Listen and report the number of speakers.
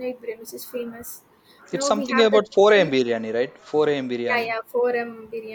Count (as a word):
two